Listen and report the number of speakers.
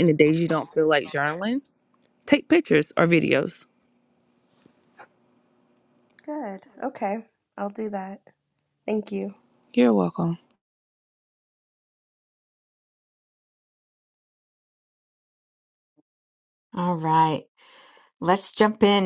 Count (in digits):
3